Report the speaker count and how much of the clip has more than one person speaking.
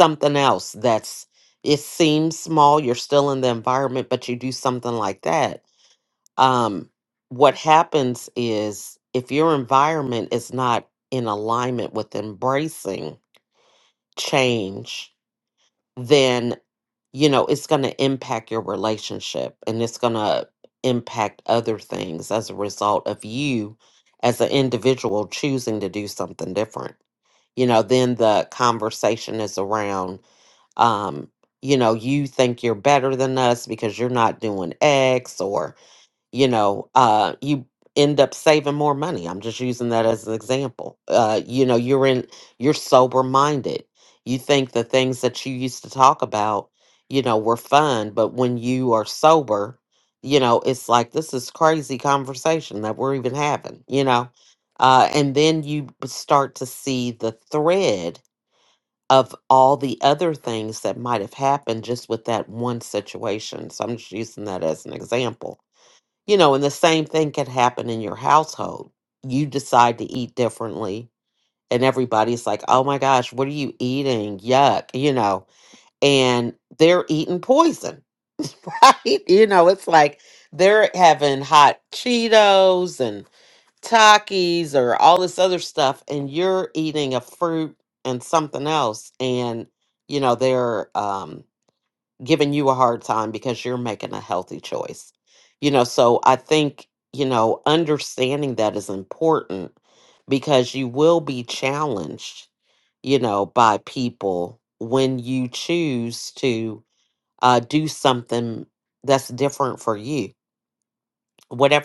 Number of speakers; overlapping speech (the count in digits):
1, no overlap